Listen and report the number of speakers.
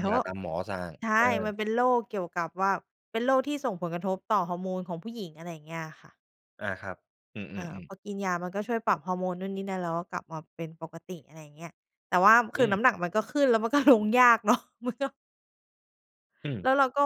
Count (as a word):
two